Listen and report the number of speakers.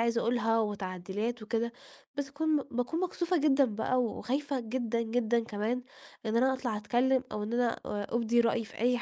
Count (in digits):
1